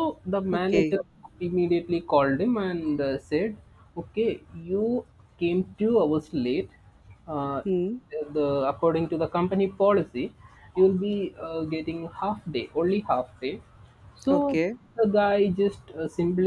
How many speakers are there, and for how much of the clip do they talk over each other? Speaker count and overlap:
2, about 4%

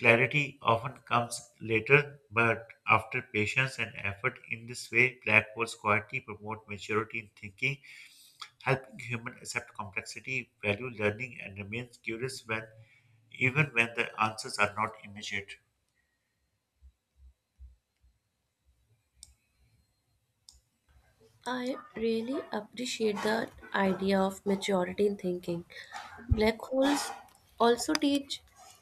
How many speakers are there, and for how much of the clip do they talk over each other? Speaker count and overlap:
2, no overlap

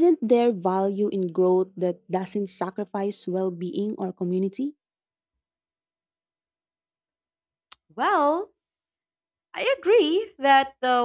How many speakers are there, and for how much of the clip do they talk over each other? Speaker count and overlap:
2, no overlap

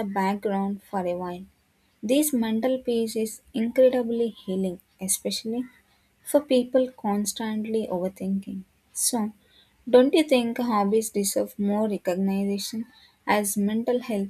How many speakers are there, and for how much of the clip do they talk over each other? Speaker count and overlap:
1, no overlap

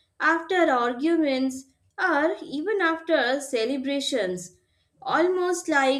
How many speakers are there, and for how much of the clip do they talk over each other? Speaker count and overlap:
1, no overlap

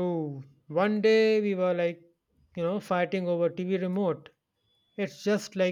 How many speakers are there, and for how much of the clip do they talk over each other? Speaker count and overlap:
1, no overlap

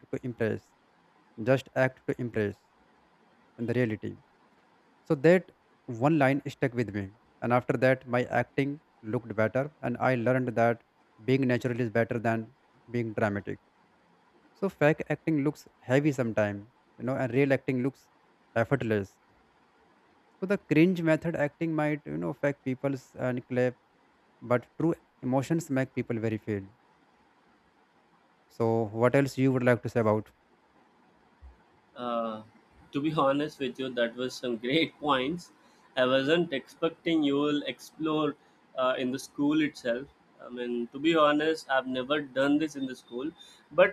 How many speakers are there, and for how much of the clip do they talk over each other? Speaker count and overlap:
2, no overlap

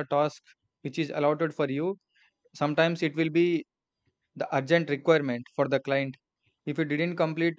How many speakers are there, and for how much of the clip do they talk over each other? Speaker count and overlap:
1, no overlap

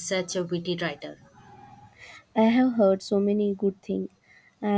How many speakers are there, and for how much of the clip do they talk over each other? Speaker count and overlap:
2, no overlap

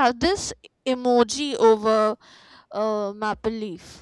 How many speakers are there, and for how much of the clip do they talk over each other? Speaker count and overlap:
1, no overlap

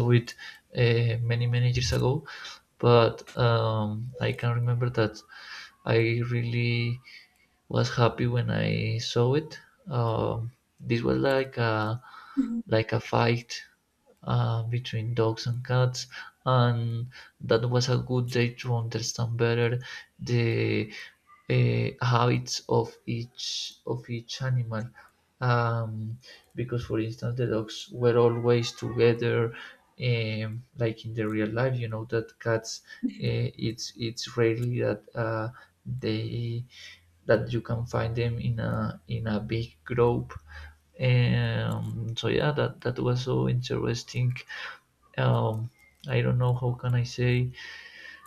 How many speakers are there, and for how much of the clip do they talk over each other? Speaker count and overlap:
1, no overlap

